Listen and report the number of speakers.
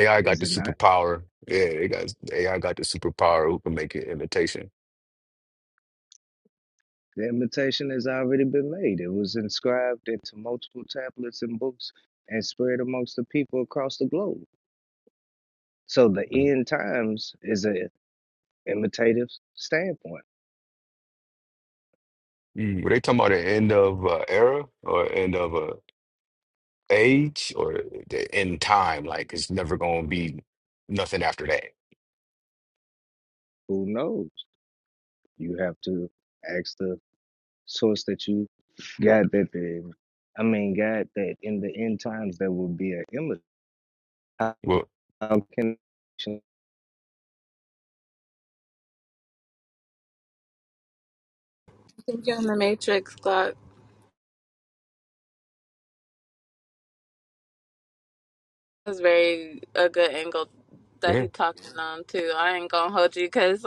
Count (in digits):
3